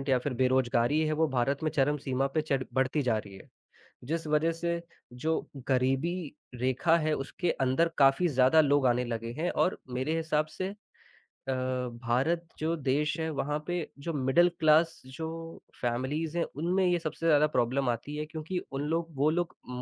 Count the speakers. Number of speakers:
one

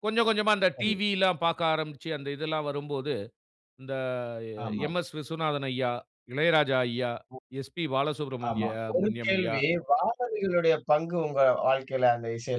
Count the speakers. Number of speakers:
two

